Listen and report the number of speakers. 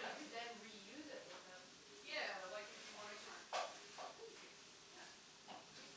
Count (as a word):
two